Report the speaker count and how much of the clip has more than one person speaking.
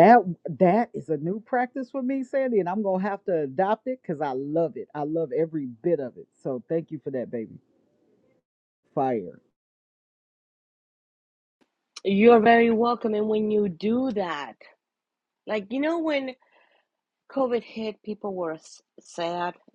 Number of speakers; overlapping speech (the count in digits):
2, no overlap